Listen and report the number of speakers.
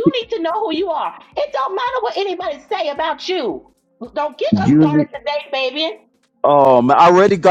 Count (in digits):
2